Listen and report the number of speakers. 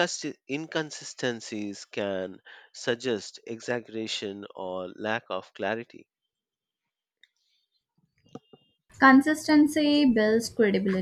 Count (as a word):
two